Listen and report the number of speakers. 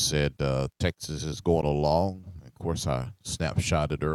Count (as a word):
one